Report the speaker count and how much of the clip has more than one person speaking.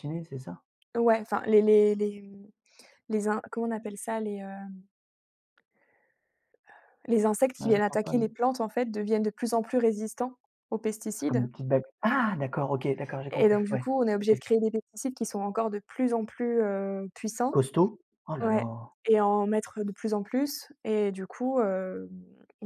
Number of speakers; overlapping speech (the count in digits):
2, about 9%